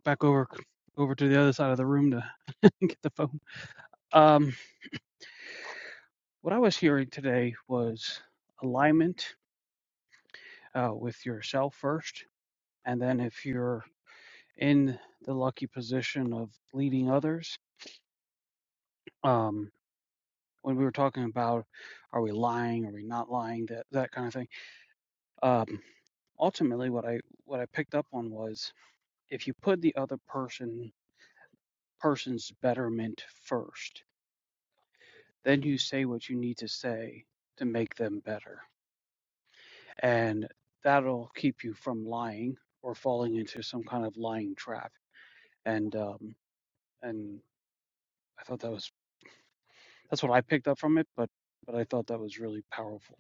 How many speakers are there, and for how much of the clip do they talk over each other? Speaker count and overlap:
1, no overlap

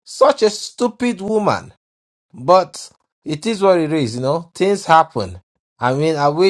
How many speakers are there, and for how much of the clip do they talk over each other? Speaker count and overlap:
1, no overlap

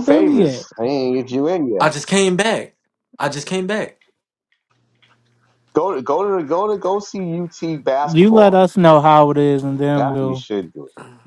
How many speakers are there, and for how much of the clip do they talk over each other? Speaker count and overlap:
3, about 15%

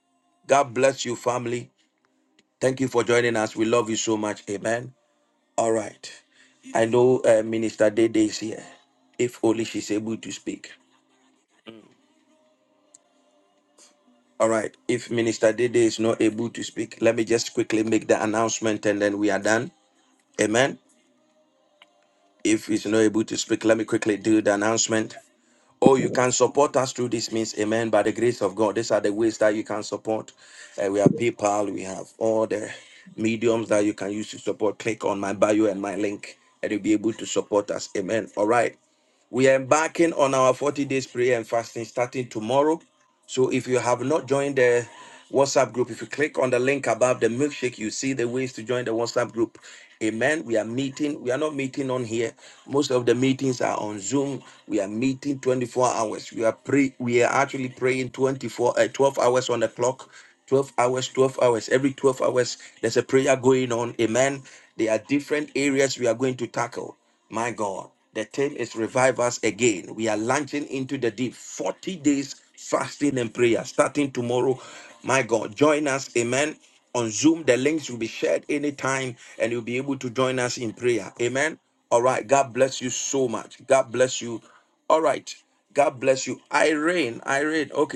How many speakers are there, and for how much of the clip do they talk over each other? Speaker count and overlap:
1, no overlap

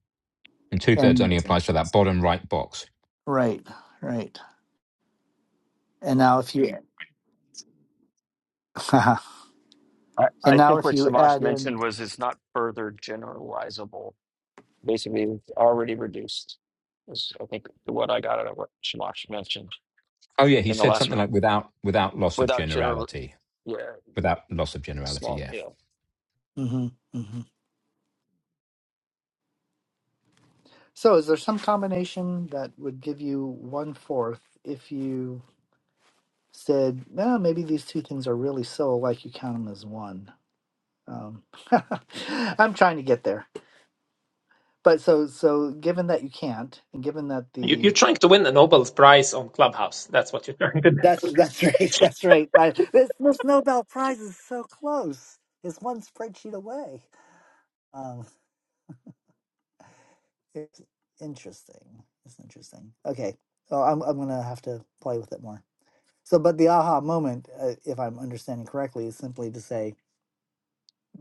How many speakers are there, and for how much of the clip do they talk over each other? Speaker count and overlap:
4, about 5%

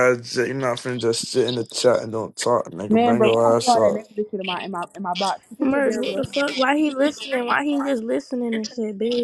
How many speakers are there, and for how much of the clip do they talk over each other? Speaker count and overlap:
3, about 18%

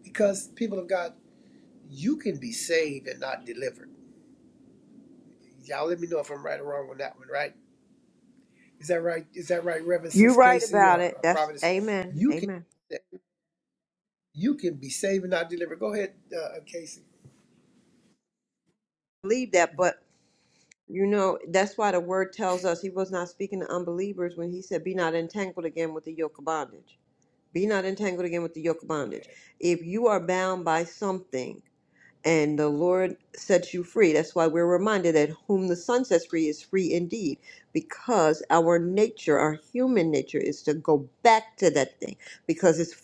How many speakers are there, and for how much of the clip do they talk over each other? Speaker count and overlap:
2, about 5%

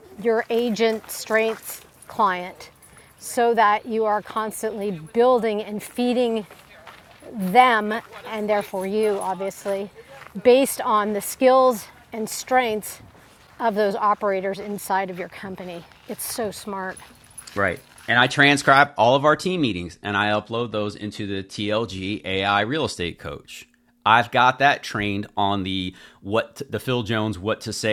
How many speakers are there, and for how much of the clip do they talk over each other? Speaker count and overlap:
2, no overlap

